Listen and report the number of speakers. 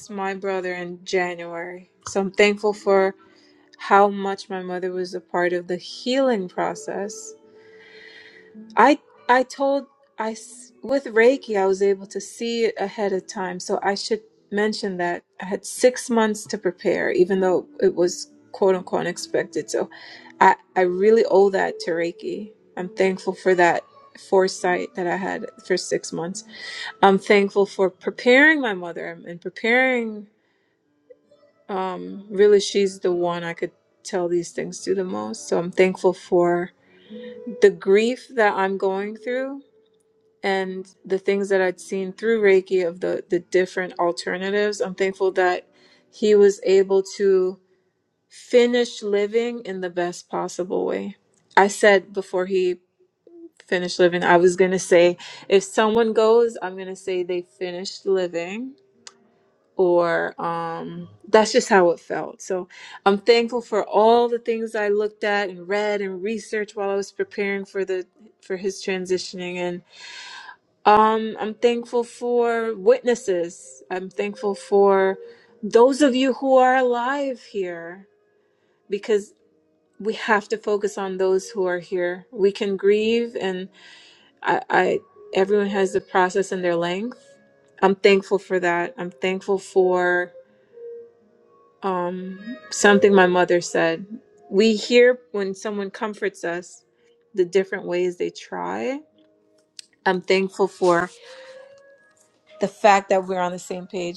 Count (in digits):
1